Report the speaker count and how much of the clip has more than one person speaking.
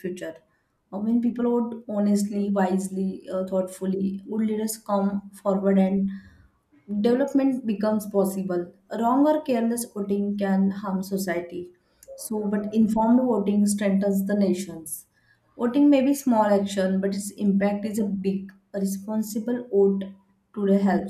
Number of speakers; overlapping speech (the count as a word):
one, no overlap